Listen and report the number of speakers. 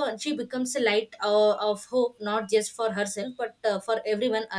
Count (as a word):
one